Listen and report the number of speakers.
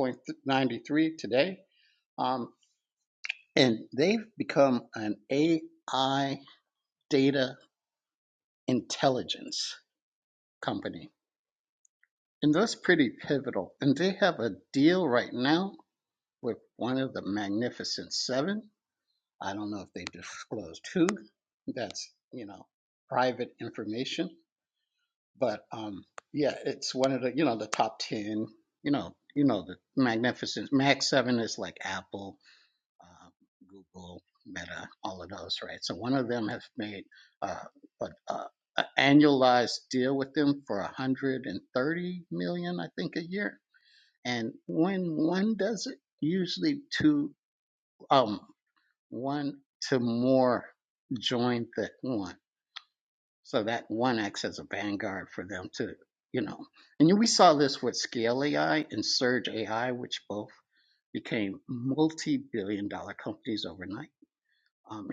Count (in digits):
1